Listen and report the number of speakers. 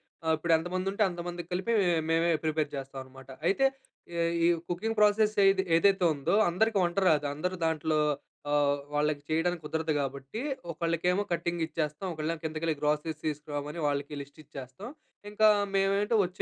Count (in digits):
1